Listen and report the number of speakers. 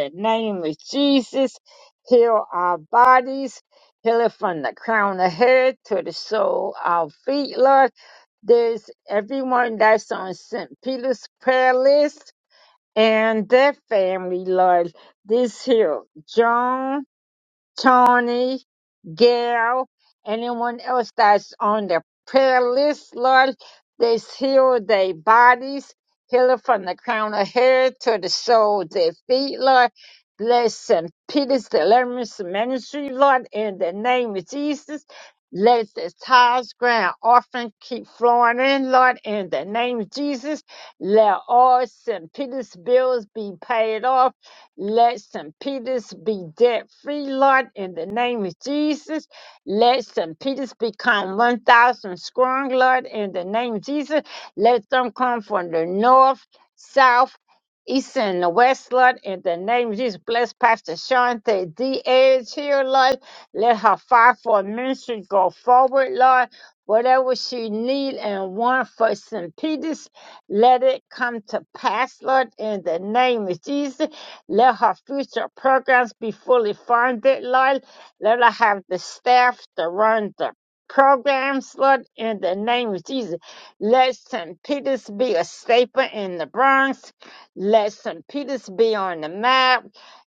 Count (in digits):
1